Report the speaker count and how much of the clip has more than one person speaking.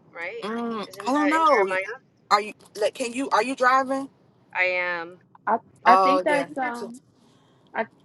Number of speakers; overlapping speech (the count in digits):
3, about 19%